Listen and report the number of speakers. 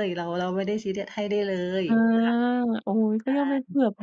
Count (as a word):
two